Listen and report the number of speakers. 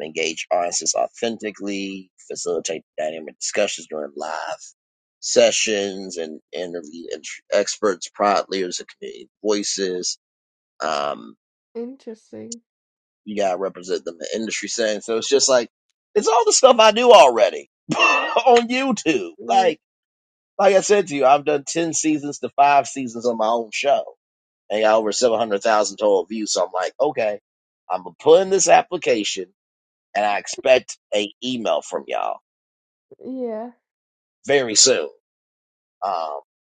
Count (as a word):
two